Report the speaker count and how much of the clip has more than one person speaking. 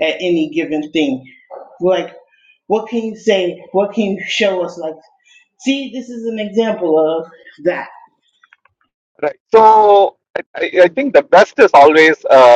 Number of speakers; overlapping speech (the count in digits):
2, no overlap